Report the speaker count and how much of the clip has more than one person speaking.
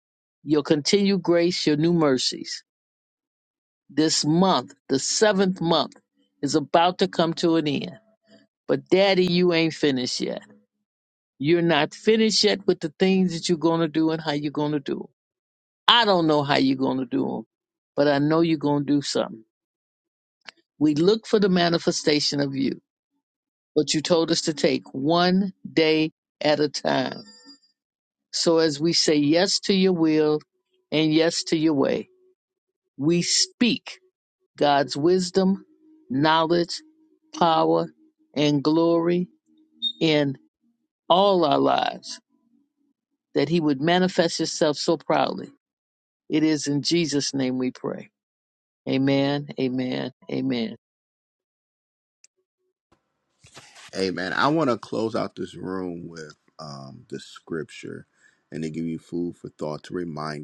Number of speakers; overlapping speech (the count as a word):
two, no overlap